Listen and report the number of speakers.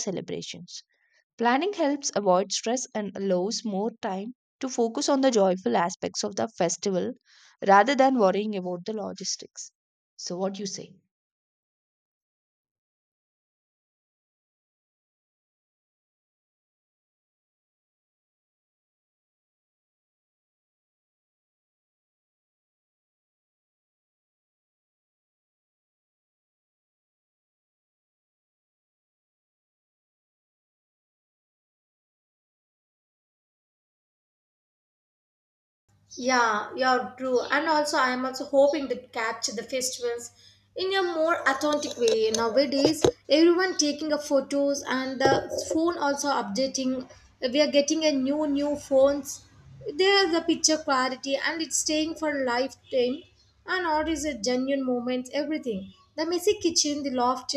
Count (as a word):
two